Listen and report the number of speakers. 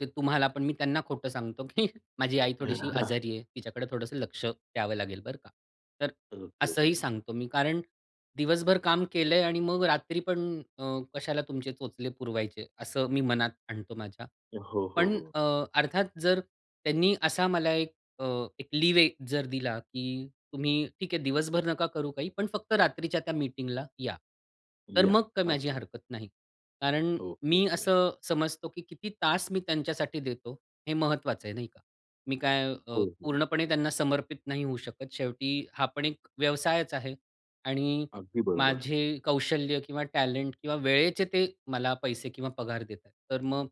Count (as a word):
two